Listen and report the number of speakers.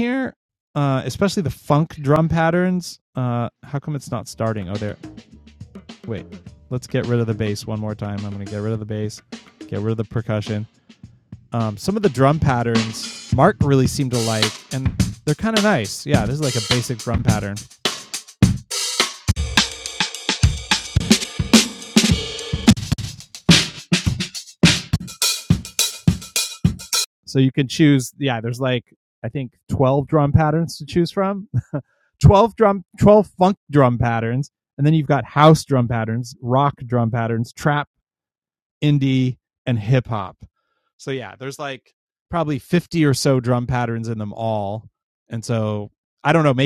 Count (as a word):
one